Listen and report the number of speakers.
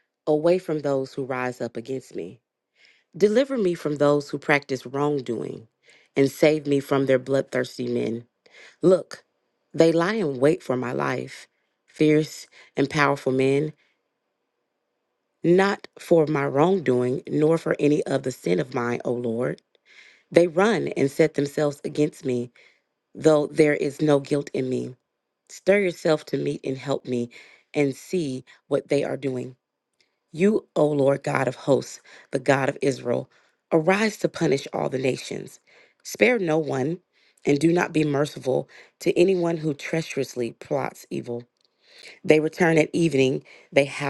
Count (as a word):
one